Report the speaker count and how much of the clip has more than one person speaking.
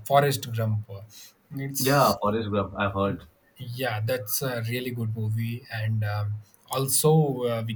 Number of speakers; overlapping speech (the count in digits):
2, about 4%